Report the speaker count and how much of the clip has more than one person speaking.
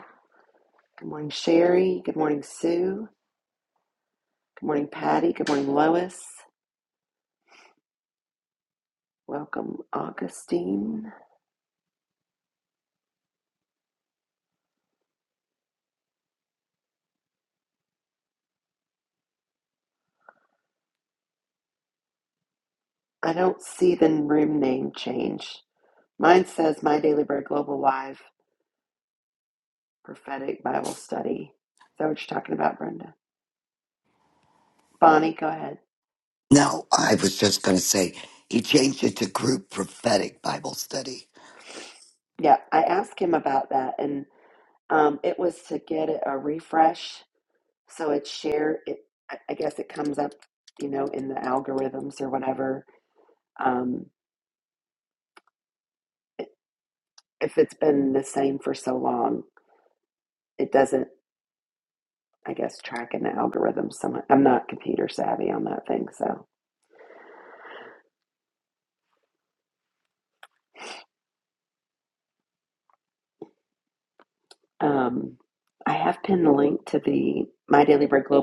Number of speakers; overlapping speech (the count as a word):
two, no overlap